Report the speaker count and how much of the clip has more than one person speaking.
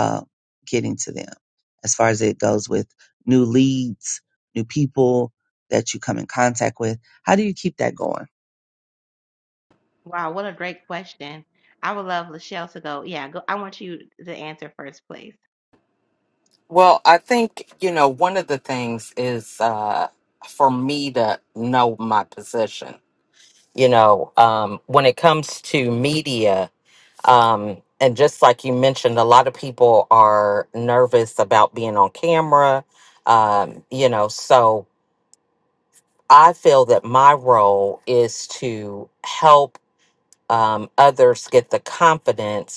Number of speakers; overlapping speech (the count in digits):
3, no overlap